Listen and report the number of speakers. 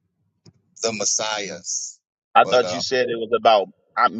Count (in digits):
2